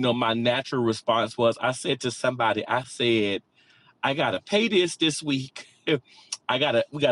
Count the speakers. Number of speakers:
1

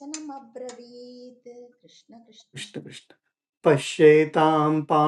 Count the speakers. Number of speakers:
2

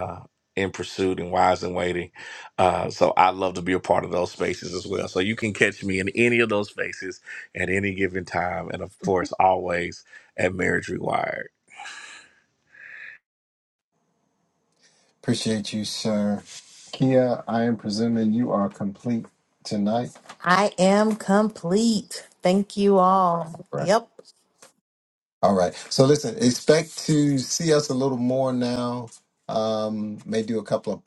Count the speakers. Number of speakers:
3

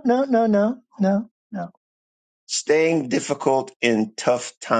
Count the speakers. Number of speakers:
2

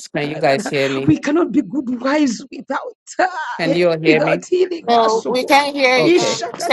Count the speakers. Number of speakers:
3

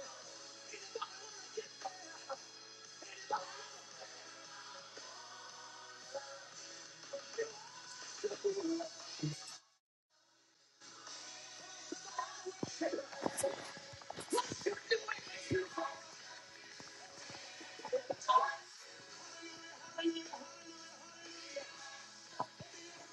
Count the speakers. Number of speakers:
0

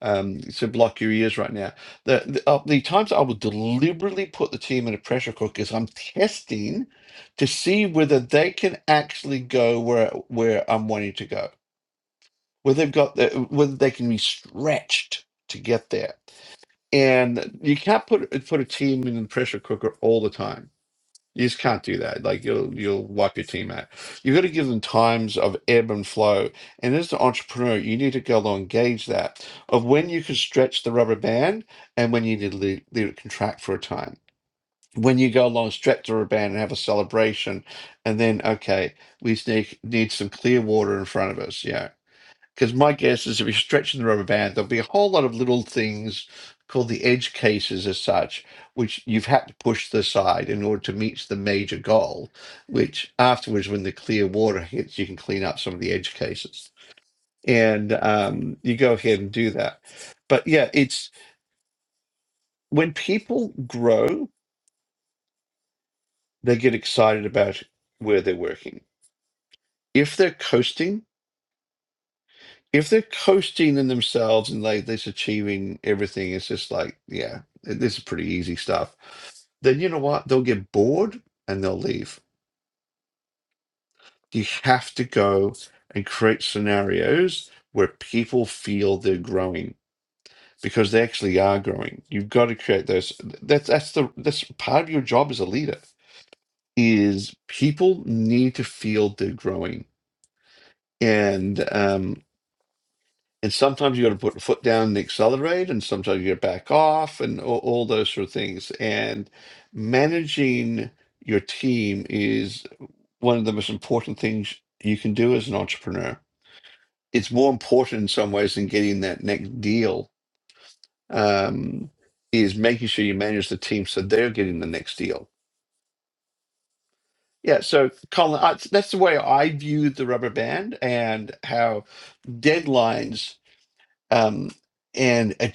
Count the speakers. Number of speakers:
1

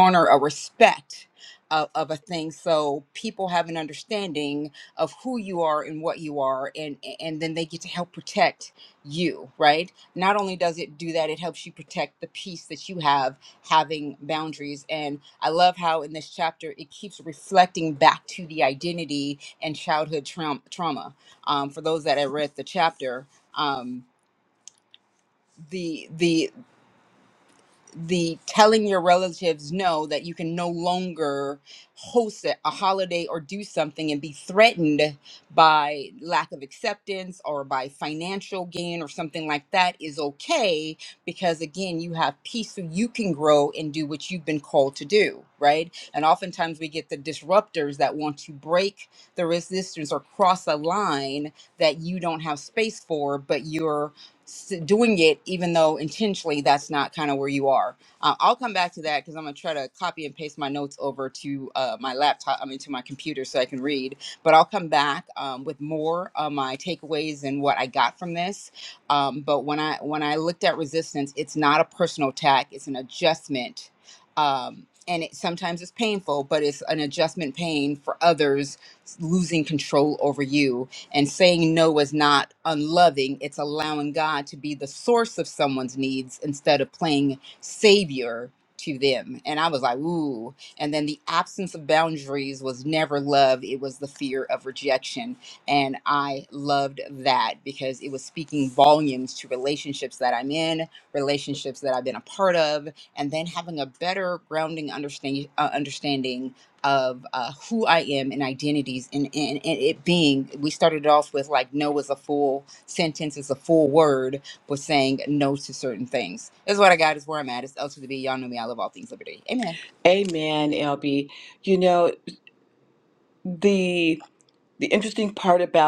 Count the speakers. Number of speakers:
2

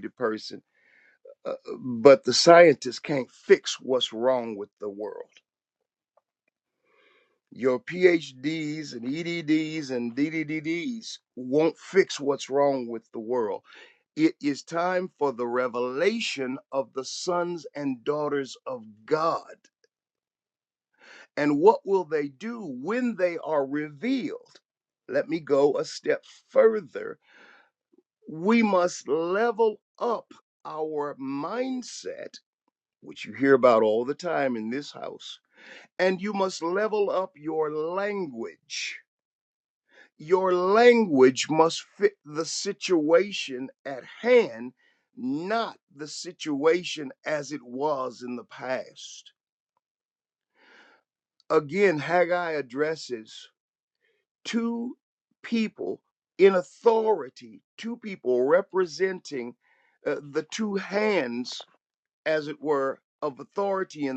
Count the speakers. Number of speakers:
1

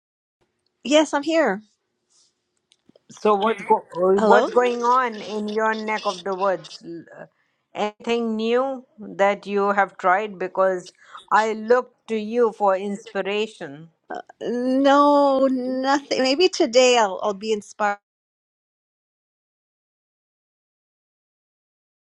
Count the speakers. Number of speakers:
2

